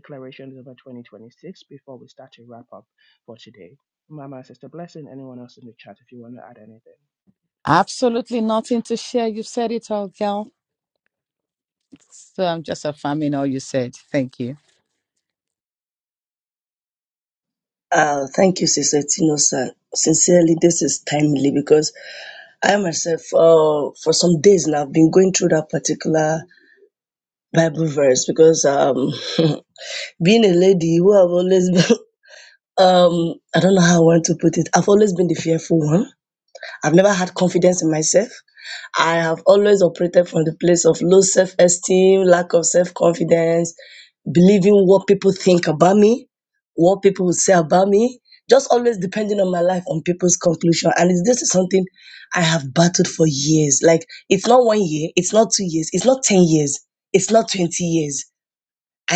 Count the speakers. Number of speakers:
three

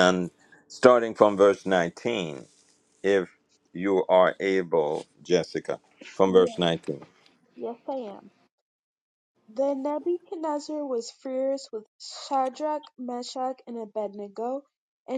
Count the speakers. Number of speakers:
two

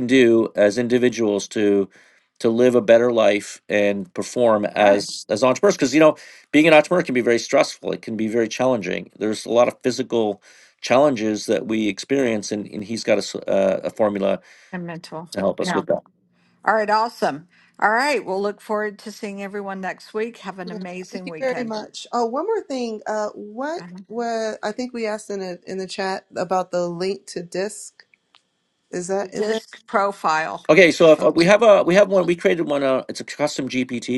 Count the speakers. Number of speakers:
three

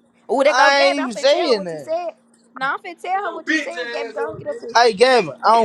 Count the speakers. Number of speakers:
two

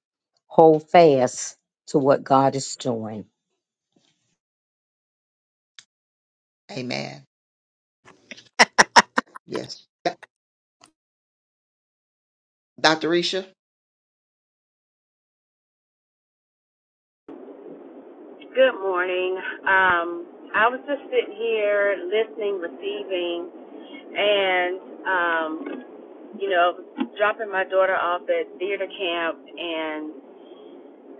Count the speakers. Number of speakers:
three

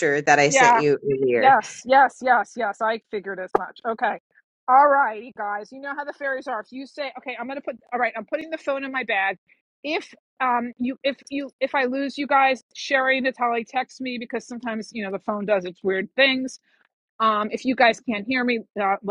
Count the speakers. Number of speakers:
two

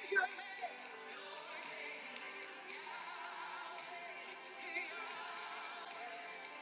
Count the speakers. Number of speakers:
zero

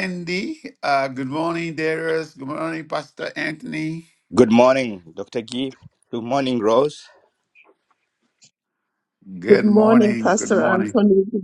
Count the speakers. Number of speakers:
three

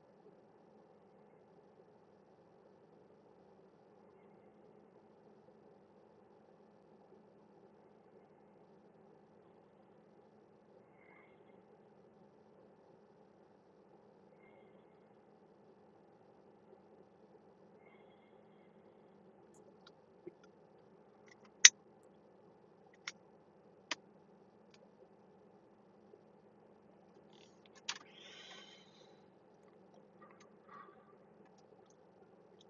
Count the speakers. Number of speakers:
zero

